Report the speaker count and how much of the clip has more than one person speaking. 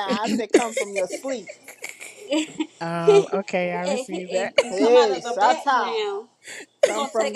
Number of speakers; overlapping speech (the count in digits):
3, about 34%